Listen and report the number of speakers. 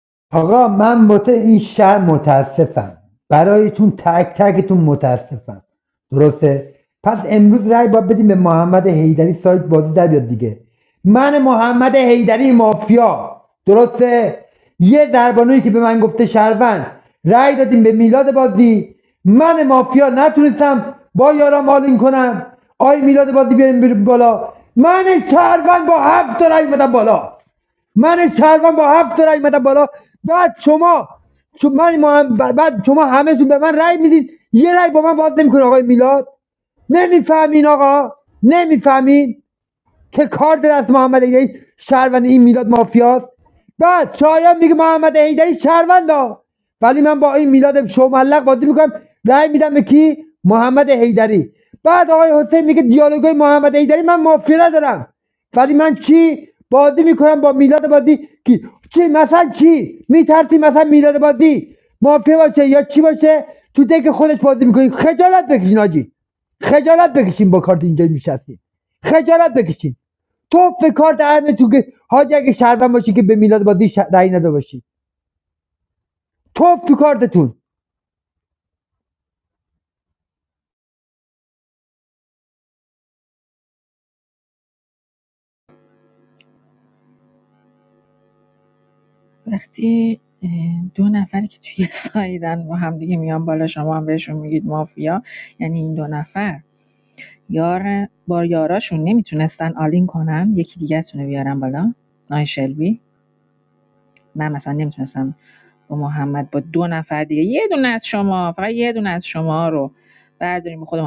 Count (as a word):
two